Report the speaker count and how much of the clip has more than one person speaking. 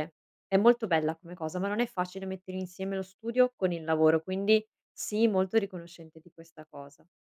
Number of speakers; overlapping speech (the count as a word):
one, no overlap